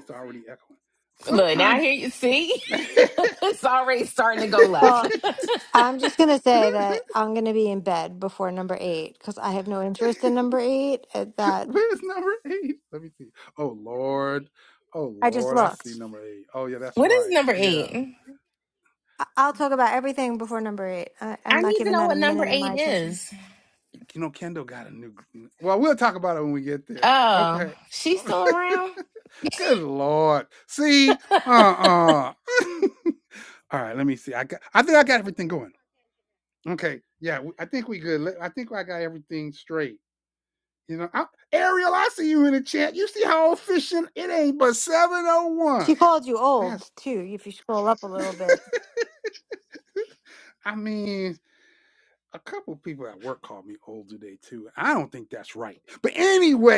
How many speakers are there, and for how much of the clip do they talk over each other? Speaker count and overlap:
3, about 9%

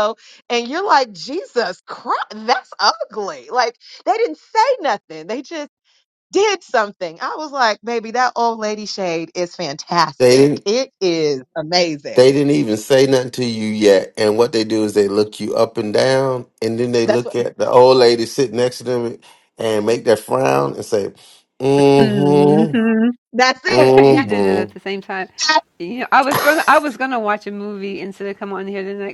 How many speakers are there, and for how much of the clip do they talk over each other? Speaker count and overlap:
3, about 8%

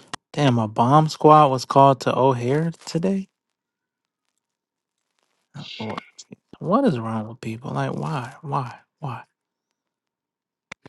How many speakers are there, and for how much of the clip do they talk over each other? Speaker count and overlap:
1, no overlap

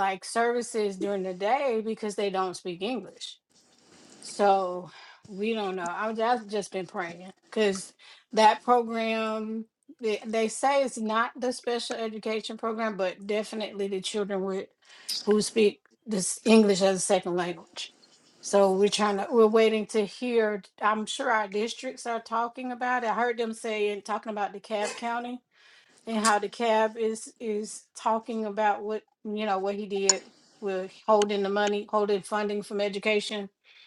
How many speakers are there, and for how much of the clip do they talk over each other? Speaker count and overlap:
1, no overlap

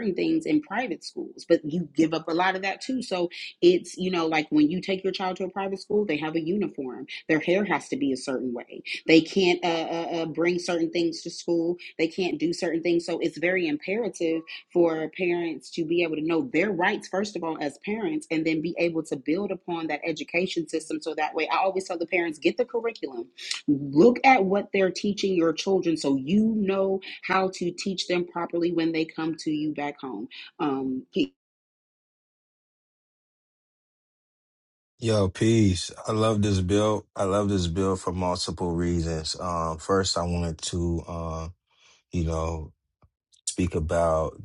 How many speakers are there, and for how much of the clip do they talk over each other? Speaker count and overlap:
2, no overlap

